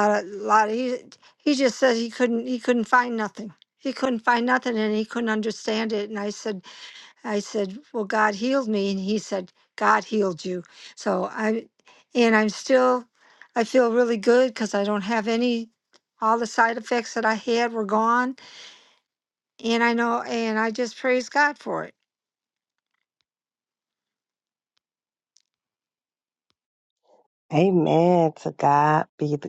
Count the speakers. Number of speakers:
two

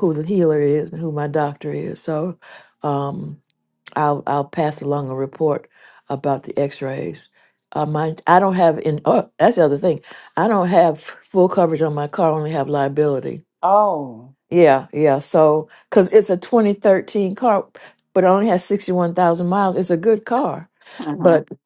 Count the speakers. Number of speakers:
two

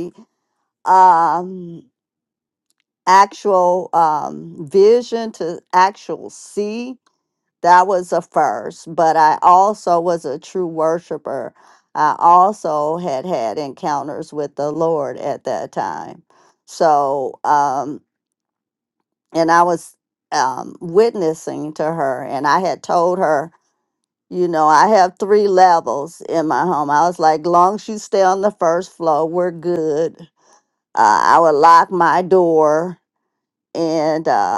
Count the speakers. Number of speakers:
one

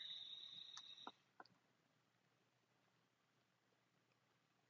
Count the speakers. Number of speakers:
zero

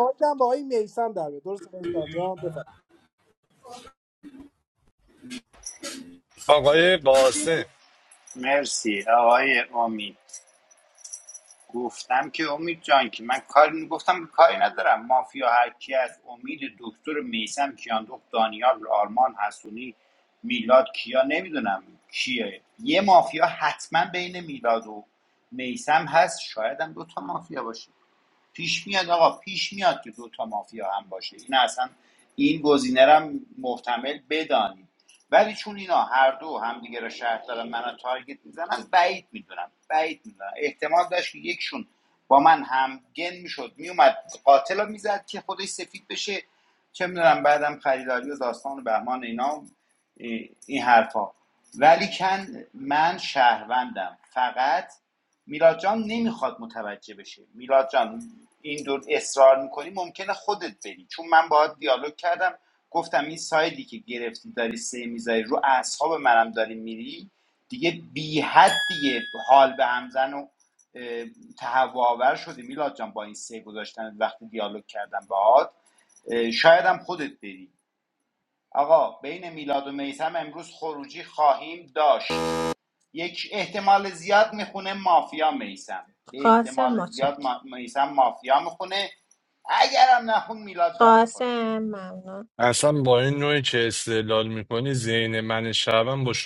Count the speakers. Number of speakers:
four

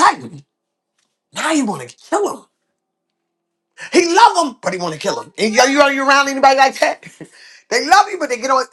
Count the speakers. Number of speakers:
one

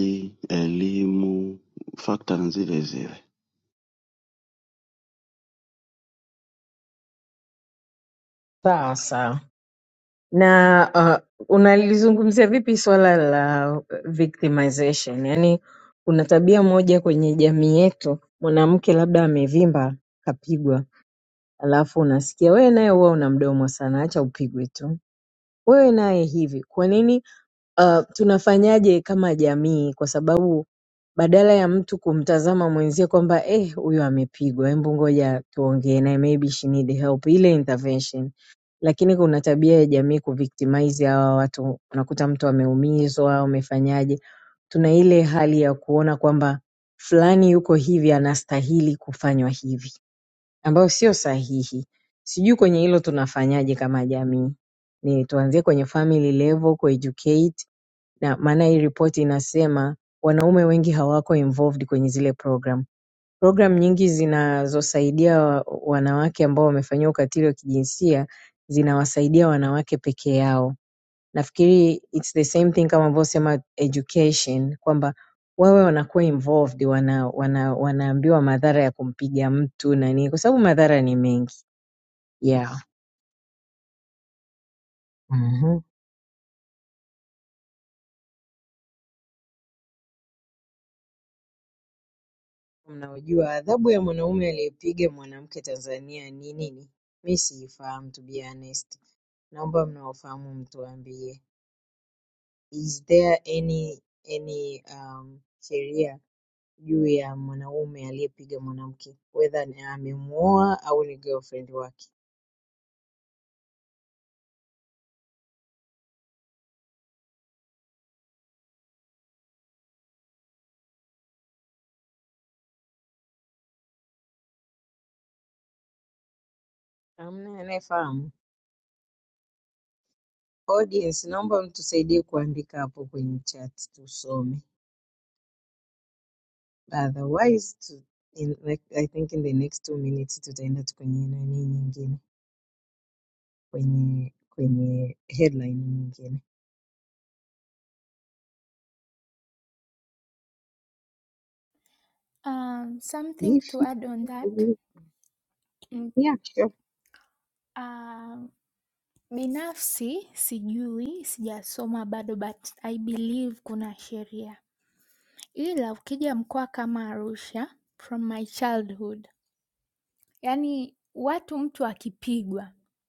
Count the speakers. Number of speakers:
three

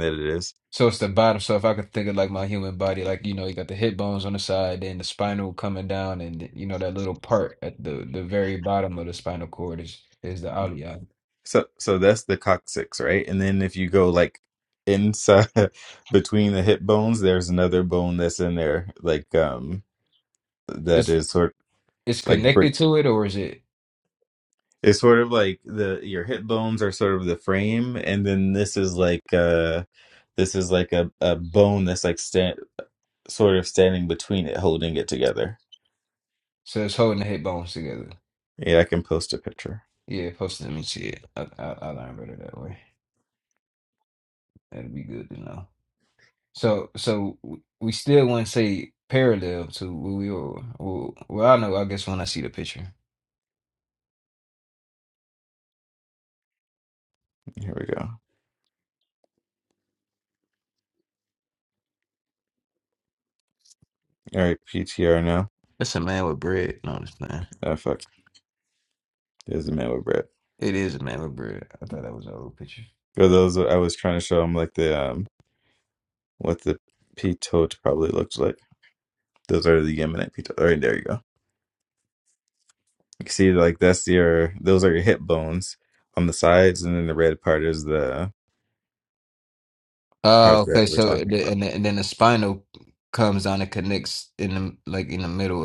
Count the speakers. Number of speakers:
two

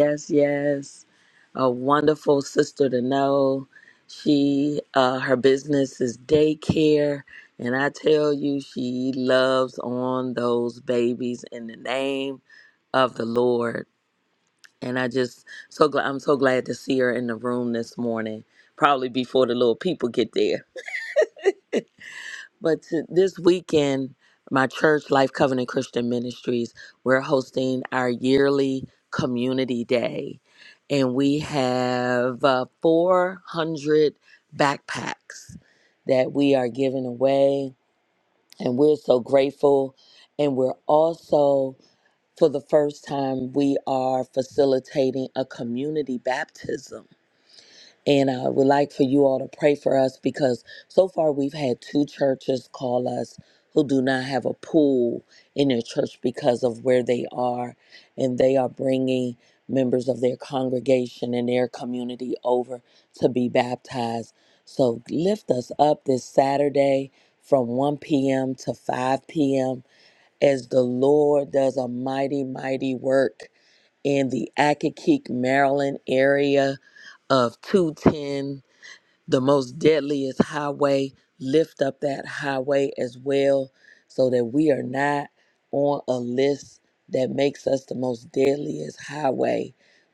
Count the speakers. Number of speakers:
one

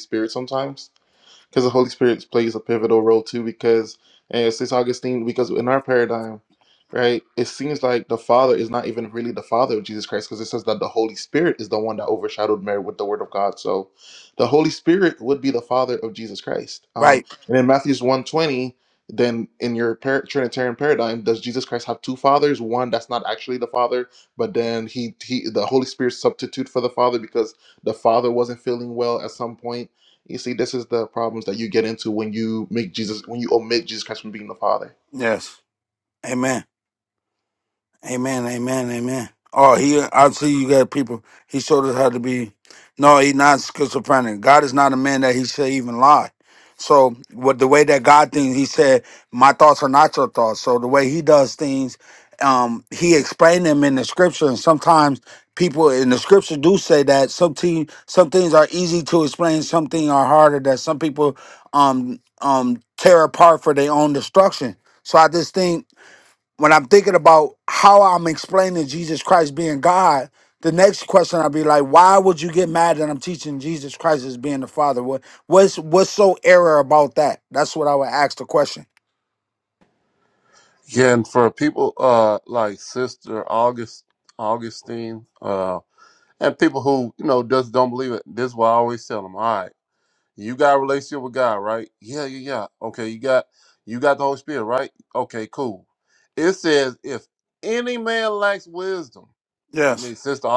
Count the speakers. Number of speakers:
three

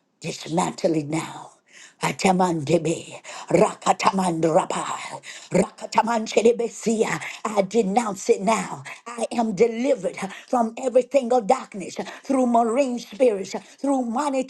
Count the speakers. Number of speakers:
one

